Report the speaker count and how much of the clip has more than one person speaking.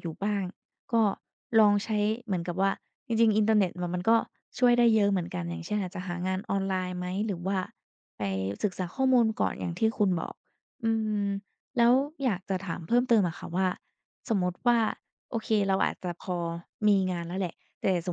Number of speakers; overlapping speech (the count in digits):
1, no overlap